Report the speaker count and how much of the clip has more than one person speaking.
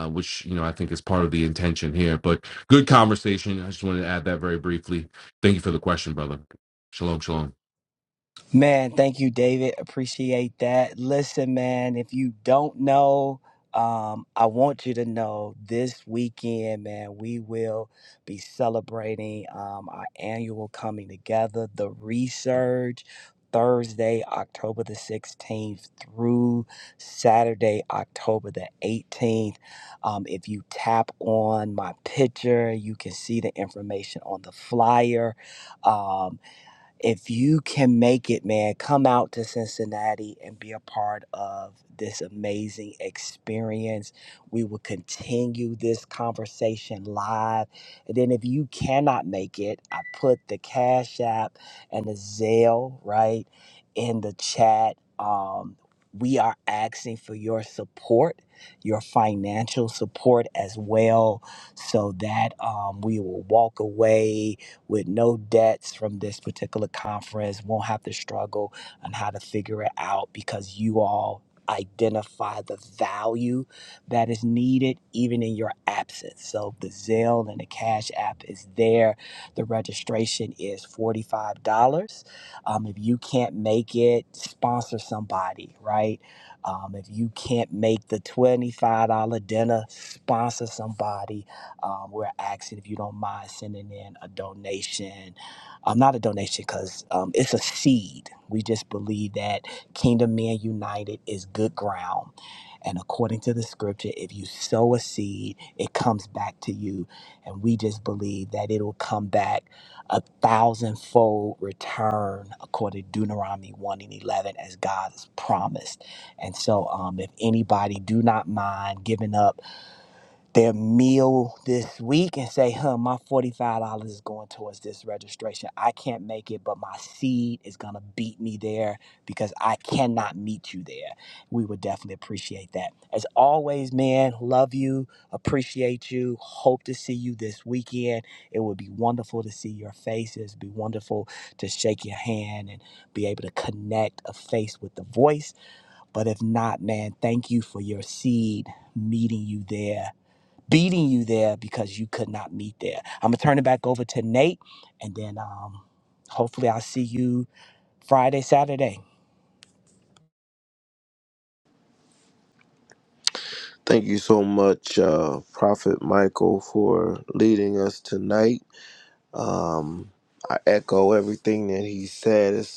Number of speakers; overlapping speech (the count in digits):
3, no overlap